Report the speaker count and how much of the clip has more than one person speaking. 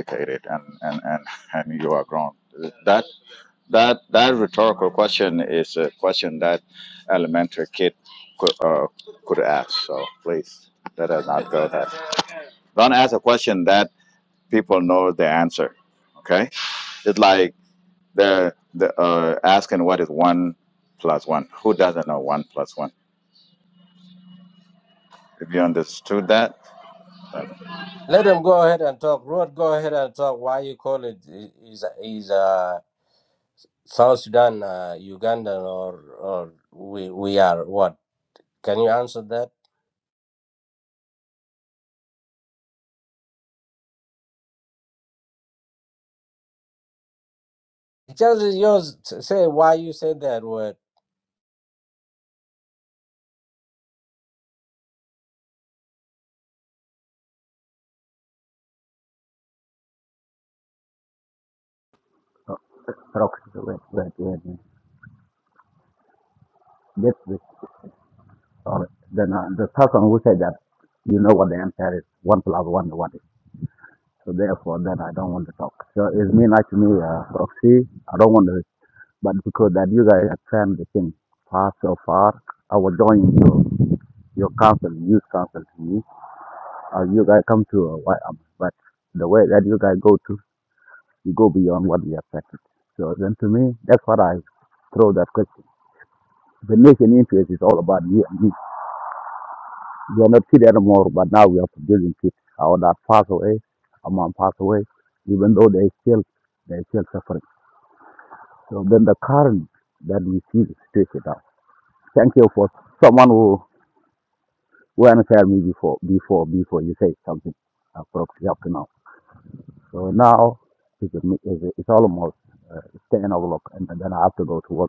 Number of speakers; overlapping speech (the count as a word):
three, no overlap